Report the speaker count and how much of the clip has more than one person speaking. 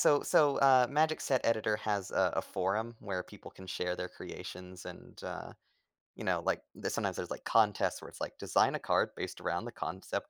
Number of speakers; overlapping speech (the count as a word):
one, no overlap